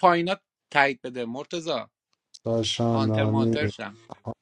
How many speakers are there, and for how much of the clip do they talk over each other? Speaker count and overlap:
two, about 18%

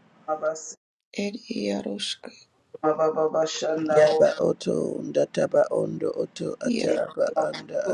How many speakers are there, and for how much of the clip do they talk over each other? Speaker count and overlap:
three, about 10%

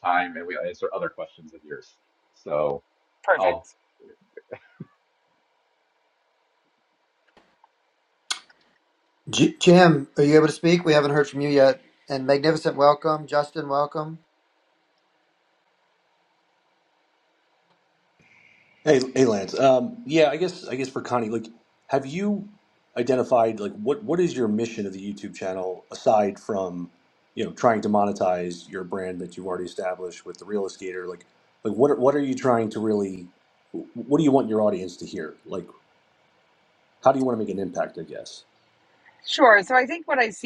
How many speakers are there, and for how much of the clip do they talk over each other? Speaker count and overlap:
four, under 1%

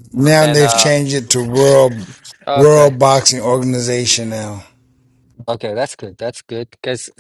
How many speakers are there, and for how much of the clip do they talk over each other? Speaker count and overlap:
two, about 14%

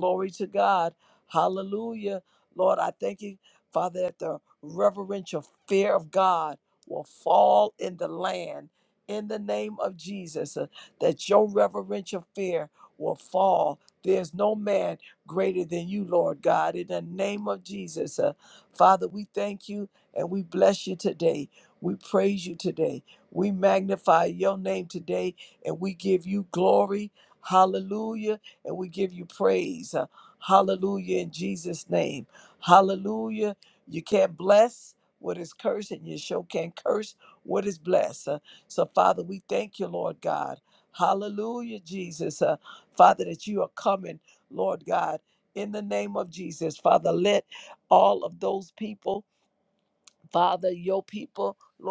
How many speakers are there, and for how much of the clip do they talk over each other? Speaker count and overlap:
one, no overlap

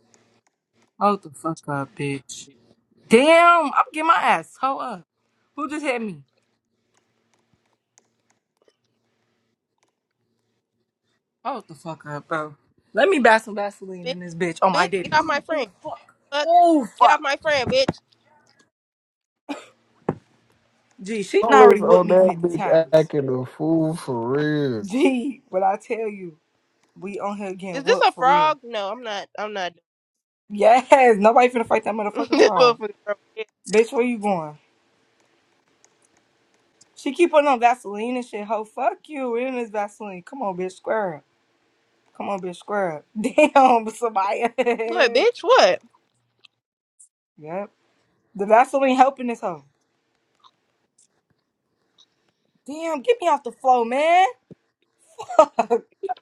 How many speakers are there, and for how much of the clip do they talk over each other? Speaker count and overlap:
three, about 7%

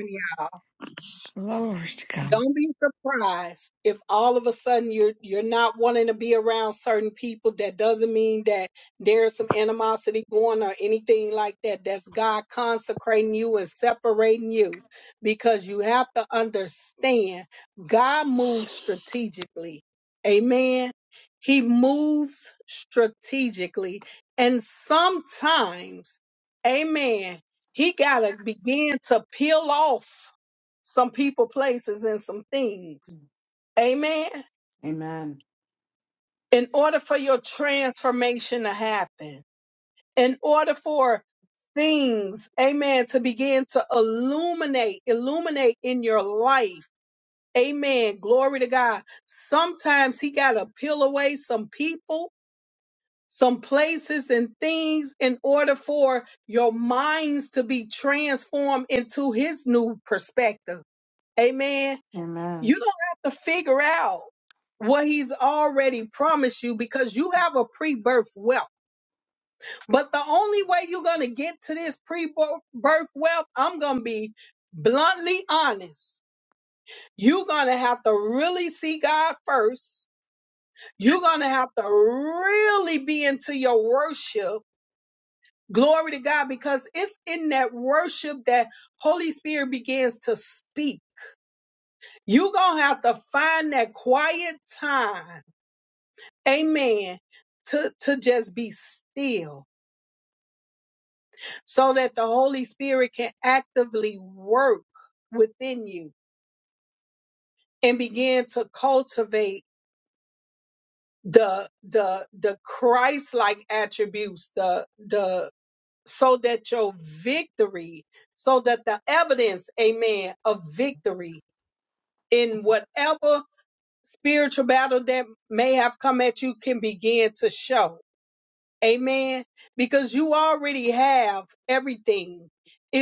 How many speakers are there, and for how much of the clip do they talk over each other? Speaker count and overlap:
three, under 1%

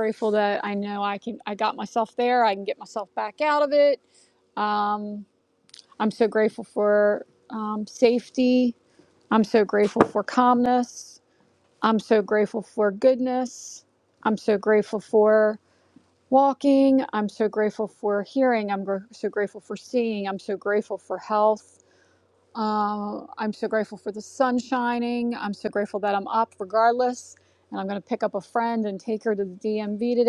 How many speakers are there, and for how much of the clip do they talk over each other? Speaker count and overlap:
one, no overlap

